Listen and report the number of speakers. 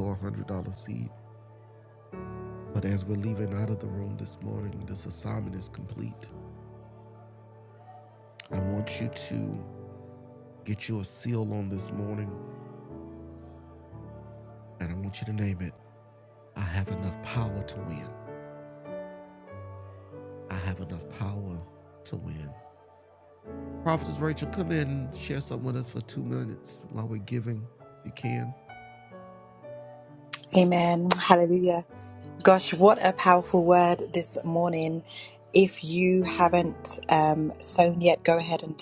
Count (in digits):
2